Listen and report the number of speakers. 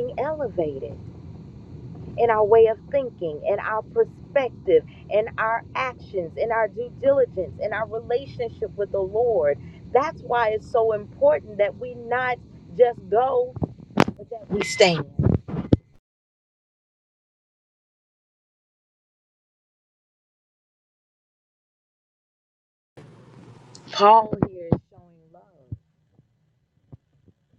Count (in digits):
1